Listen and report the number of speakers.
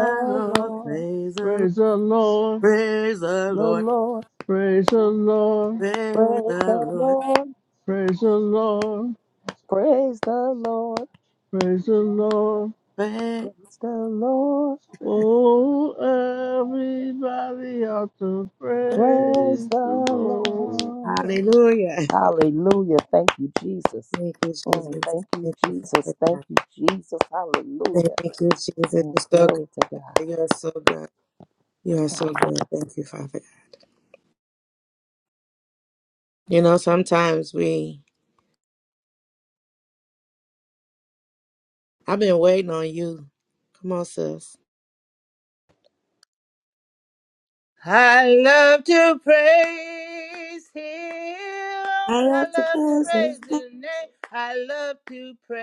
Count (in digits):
4